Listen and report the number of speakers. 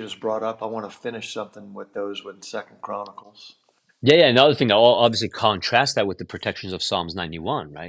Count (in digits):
2